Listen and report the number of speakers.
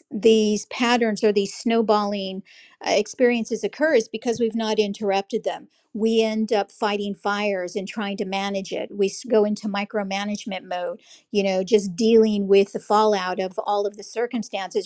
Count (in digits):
1